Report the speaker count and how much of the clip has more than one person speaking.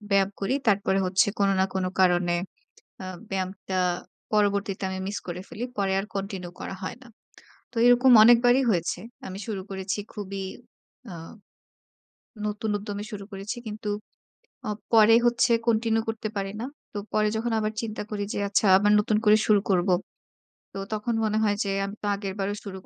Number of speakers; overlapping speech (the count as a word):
one, no overlap